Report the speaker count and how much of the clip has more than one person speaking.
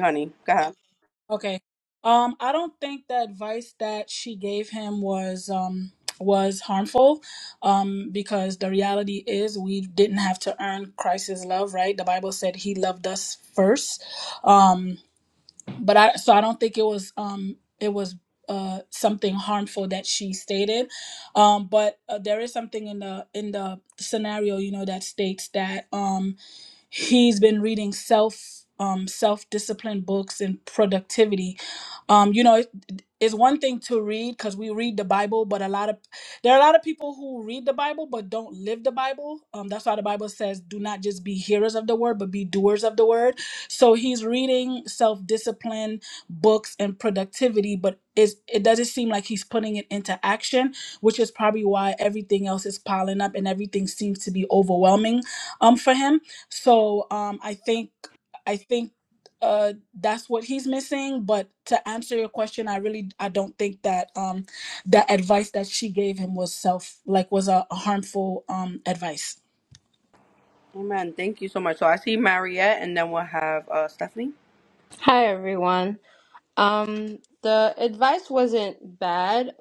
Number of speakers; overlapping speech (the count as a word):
three, no overlap